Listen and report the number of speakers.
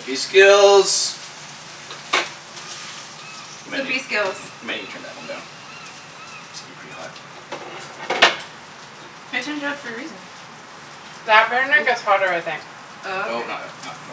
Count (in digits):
3